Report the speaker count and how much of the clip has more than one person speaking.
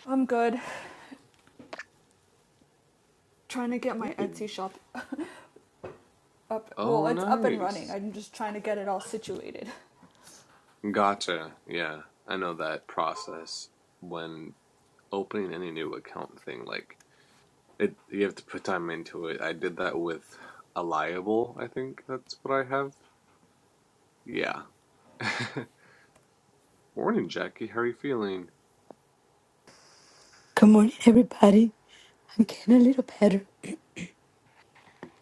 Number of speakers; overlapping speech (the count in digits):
3, about 4%